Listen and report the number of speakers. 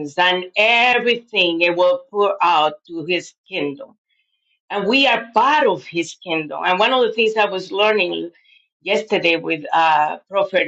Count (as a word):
one